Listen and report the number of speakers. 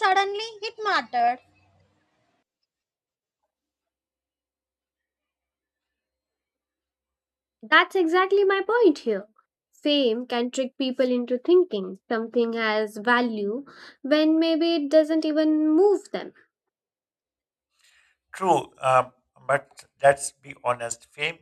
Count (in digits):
3